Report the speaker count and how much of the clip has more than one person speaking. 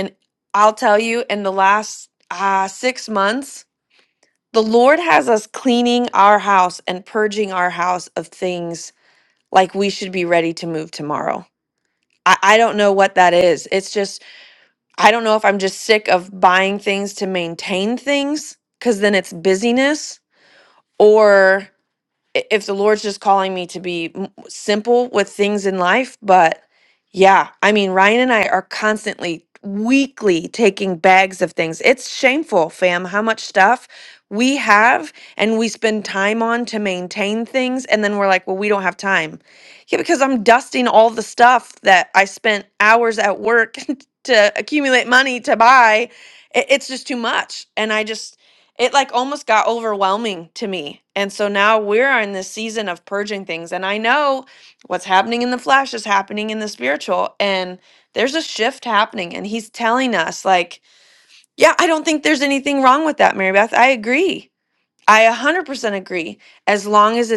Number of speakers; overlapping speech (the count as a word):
one, no overlap